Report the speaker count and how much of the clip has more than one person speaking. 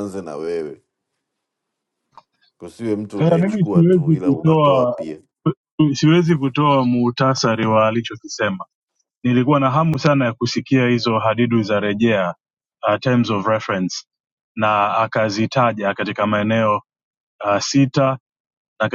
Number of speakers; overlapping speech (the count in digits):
2, about 10%